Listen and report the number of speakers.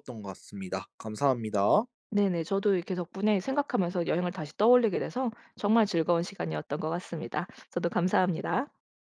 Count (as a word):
two